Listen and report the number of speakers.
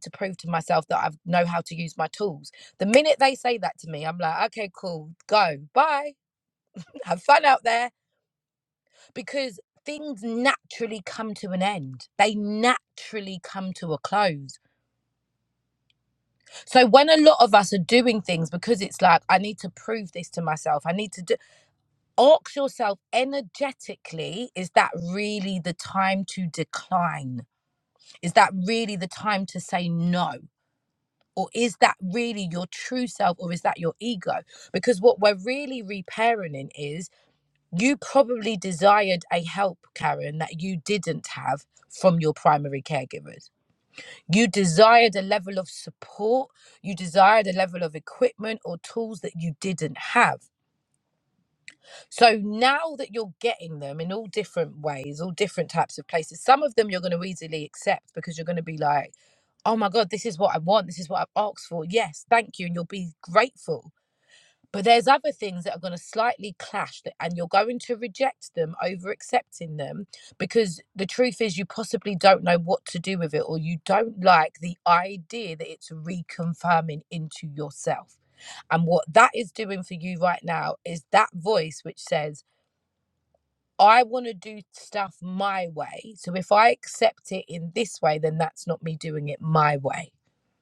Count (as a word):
one